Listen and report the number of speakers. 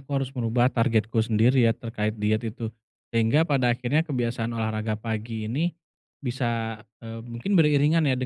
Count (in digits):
1